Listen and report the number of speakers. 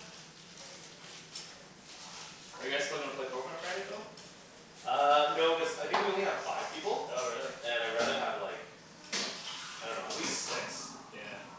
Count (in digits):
2